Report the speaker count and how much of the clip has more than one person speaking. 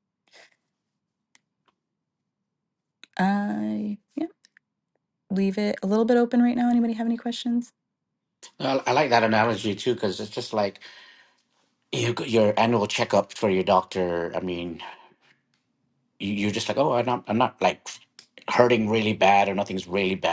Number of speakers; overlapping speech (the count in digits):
2, no overlap